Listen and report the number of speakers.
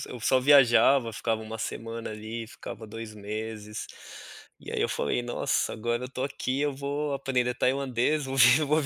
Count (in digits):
1